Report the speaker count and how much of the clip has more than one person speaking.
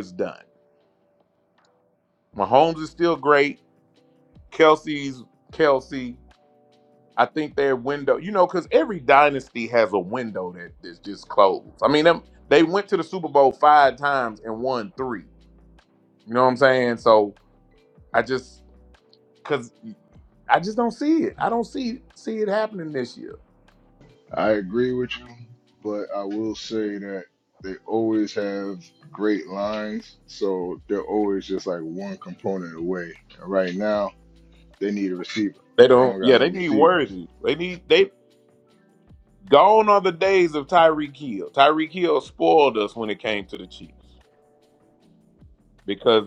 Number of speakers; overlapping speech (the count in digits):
2, about 2%